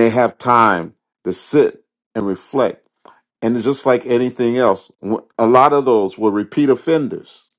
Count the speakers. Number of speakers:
one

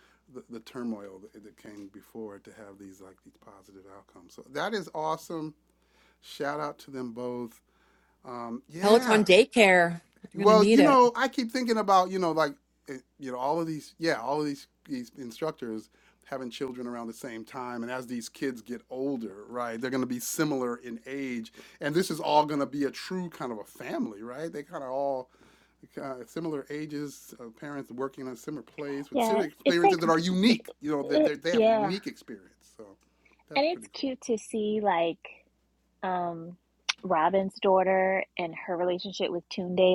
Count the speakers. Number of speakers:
three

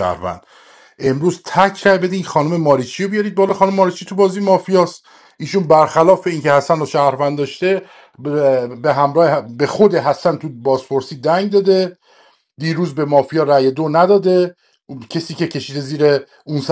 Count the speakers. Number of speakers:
one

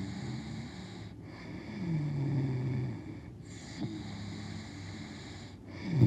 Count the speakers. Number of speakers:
zero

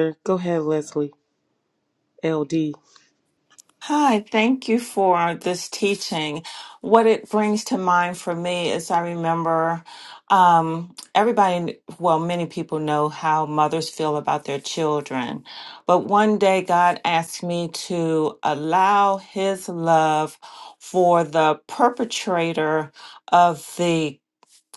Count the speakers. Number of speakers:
two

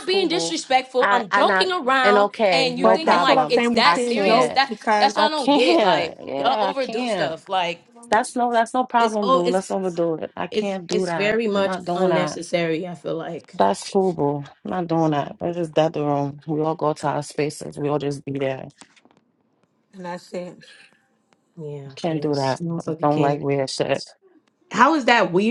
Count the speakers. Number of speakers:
three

